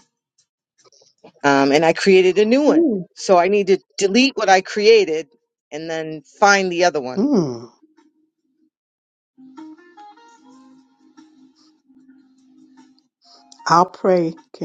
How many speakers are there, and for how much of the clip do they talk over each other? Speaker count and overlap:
2, about 1%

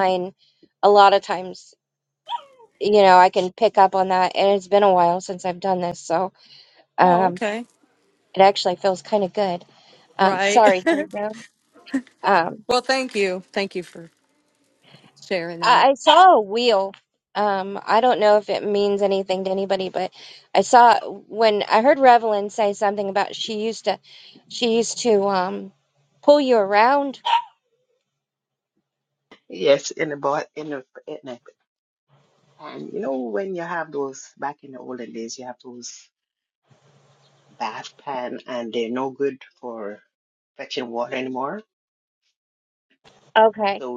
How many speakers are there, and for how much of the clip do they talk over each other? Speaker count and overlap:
3, about 3%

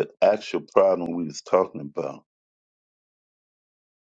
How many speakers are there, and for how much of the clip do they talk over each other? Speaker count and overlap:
1, no overlap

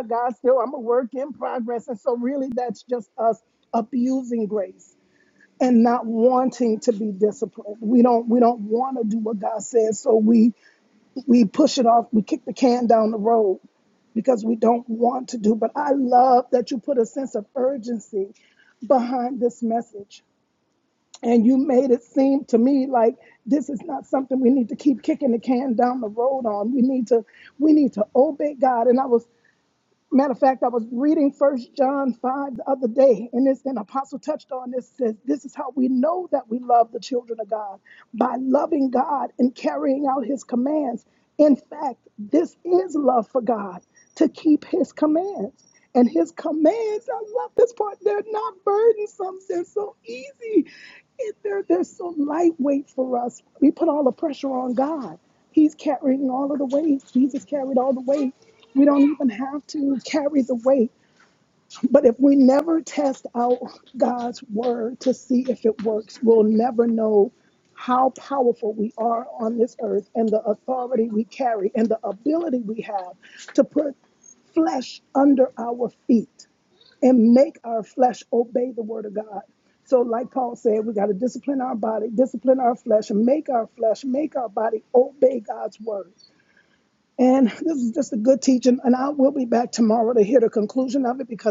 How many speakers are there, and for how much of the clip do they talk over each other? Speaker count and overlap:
1, no overlap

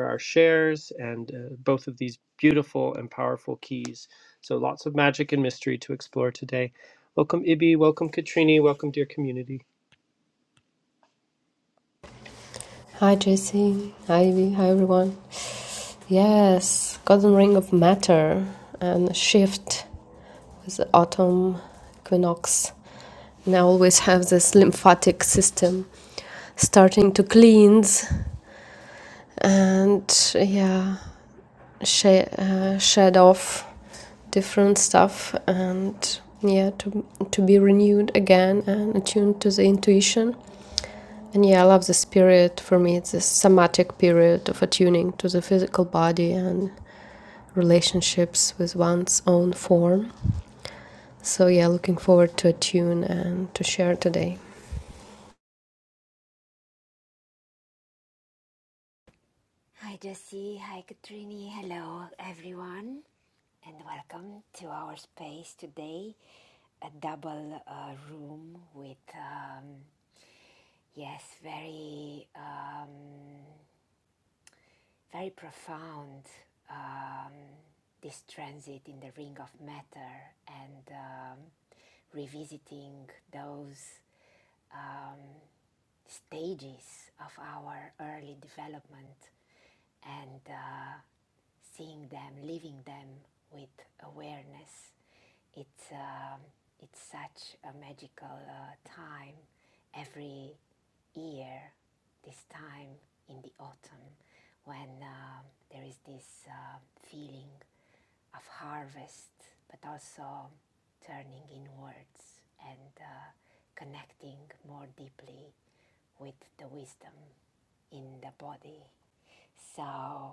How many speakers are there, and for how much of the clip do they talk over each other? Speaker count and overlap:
3, no overlap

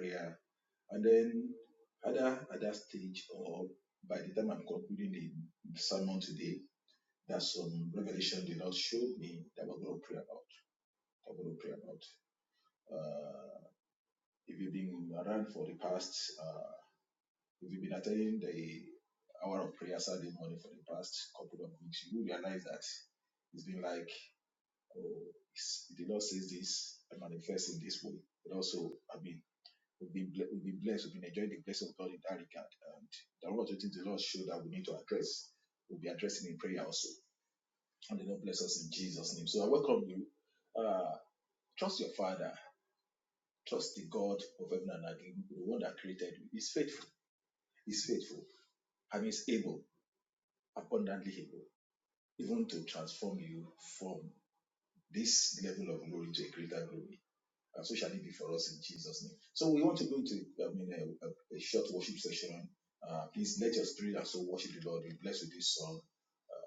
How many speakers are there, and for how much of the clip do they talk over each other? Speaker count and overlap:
1, no overlap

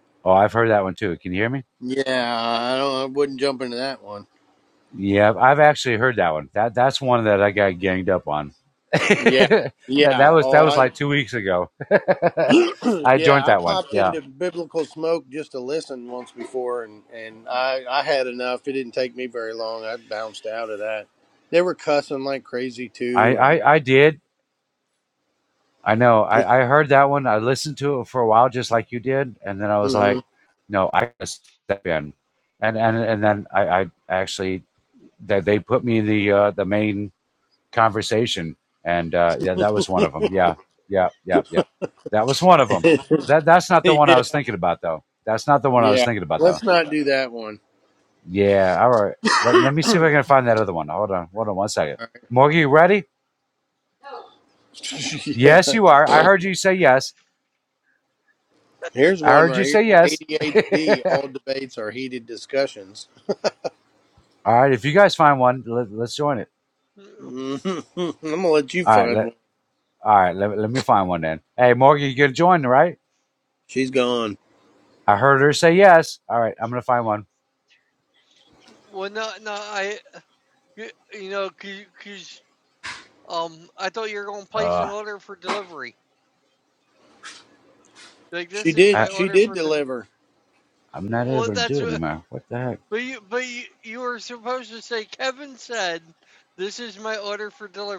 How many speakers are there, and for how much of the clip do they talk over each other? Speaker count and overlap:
3, about 9%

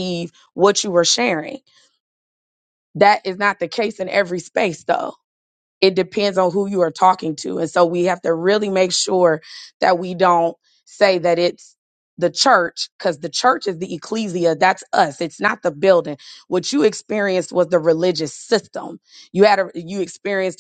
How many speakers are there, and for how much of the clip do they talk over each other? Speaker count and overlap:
1, no overlap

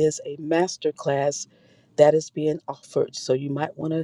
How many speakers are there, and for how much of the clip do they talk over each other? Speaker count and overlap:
1, no overlap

